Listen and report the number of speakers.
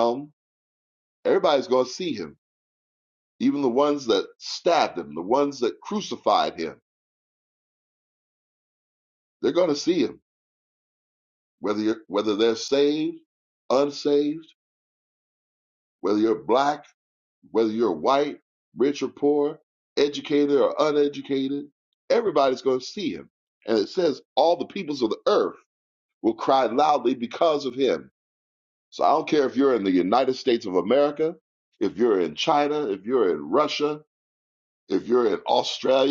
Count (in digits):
1